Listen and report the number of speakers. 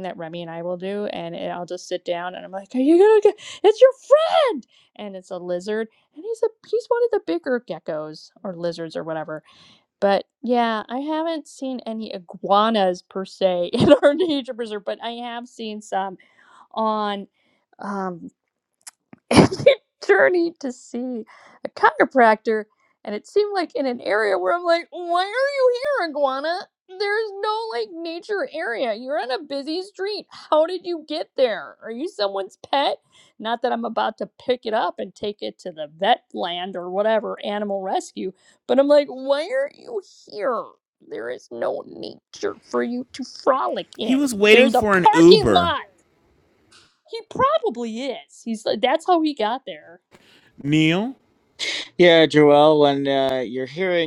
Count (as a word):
three